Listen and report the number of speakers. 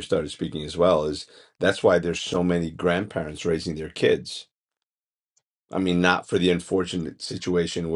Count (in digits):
1